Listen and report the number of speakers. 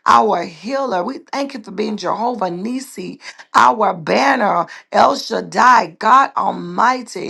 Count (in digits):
1